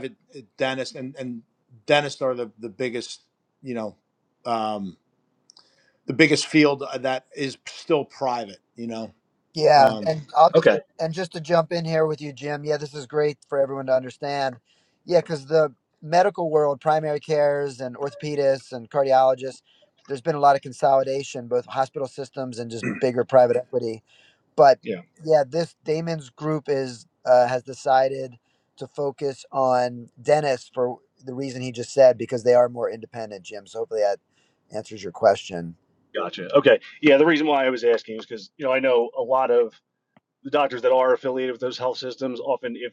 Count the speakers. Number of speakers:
3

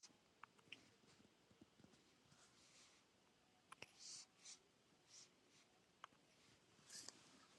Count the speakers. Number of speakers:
0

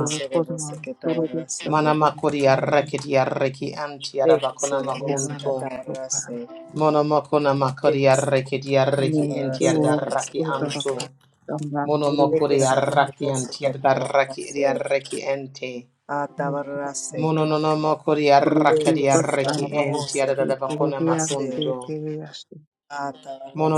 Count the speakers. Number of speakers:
3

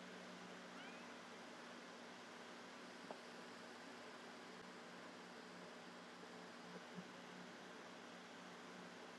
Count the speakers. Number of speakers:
0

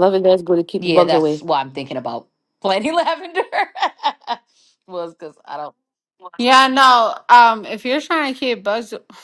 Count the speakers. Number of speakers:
3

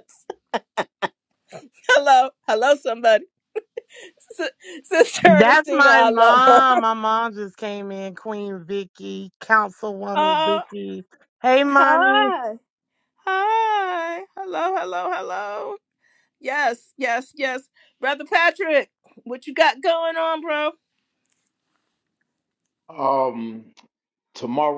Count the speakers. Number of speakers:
3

